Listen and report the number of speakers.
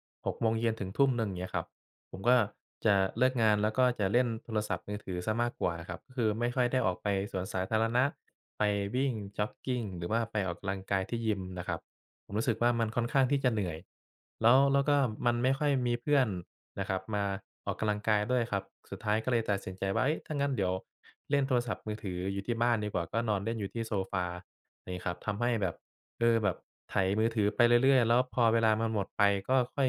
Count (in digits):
1